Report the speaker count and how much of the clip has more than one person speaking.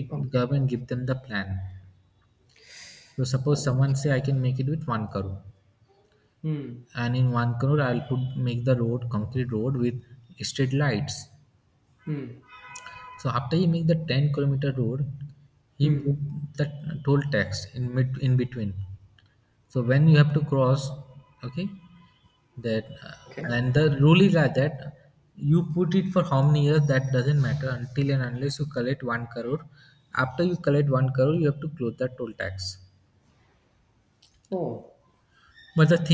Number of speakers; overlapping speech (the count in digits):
2, about 3%